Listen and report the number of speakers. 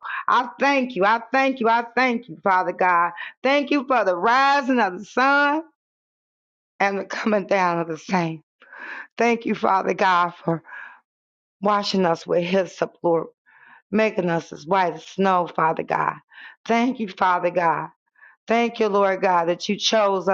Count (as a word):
one